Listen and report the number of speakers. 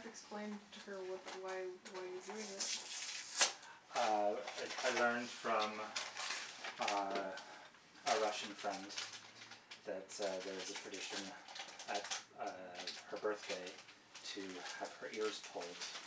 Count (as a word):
two